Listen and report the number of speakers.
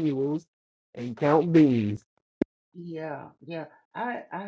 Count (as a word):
two